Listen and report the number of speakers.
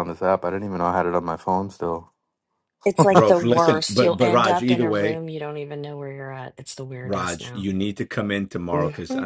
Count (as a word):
three